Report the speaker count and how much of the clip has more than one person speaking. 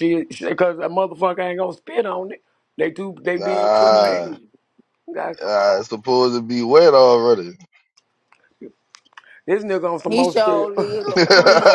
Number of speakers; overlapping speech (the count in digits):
3, about 22%